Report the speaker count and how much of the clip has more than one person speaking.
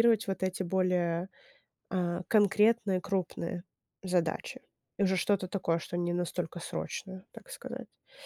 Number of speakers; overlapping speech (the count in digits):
1, no overlap